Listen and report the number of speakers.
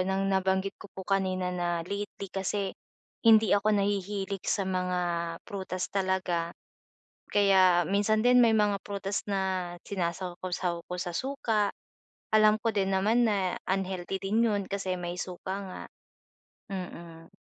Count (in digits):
1